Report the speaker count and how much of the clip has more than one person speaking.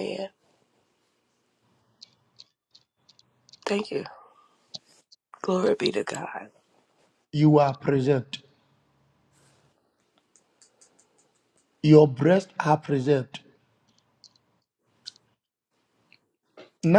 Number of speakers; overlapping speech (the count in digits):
2, no overlap